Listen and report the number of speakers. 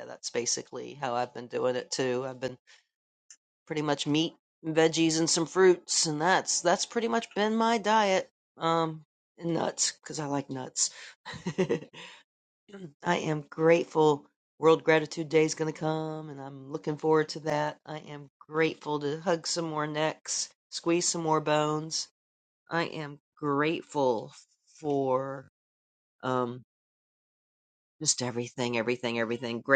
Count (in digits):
1